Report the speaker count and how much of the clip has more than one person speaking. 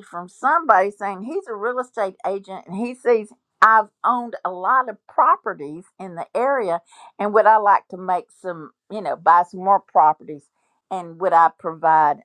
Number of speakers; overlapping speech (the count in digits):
1, no overlap